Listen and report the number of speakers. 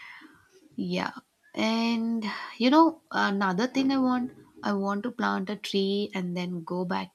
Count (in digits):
1